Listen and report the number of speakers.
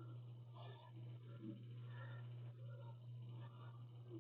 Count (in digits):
0